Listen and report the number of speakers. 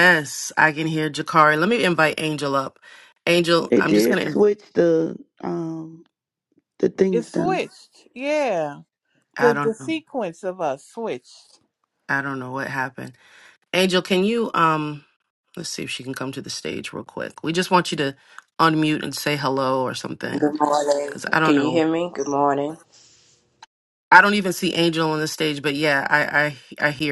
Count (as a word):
four